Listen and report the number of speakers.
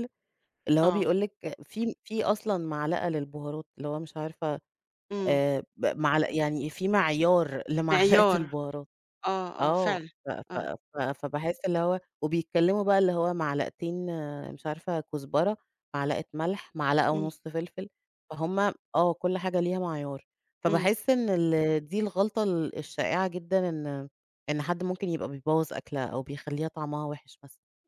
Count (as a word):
two